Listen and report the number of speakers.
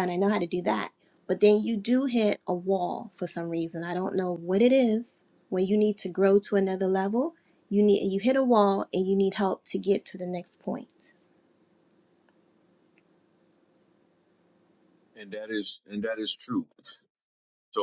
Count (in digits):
2